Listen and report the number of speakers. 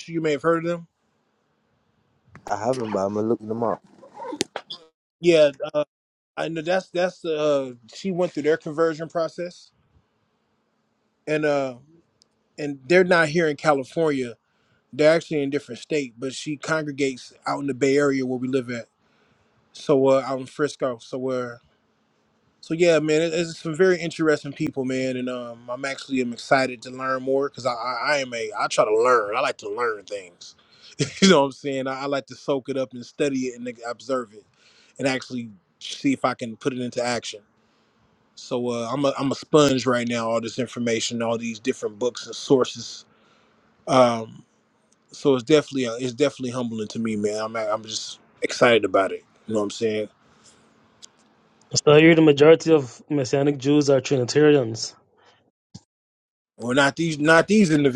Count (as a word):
three